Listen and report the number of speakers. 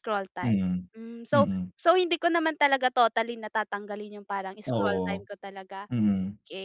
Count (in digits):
2